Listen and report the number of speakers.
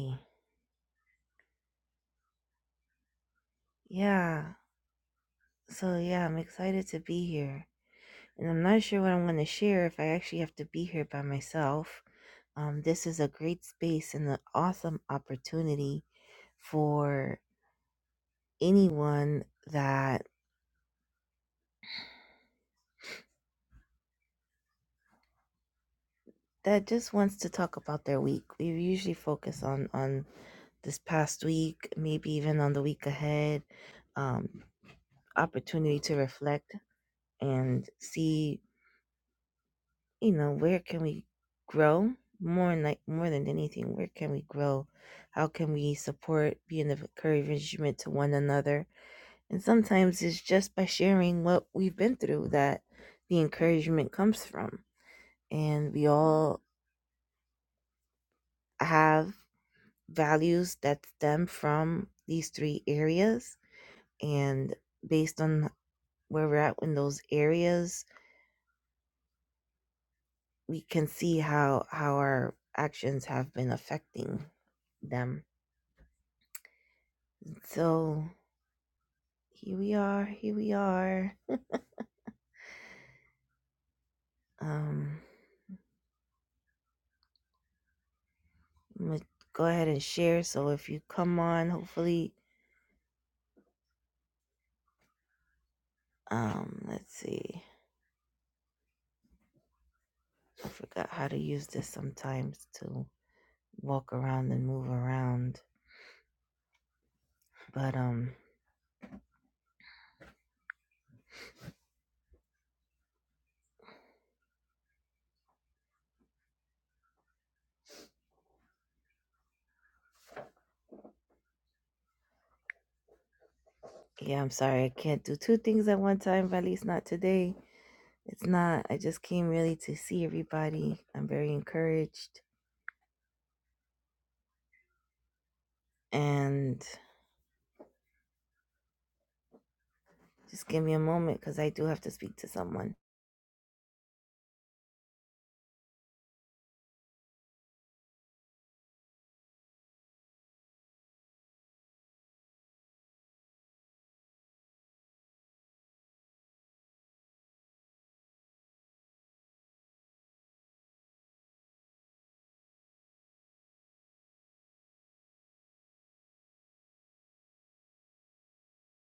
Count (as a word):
one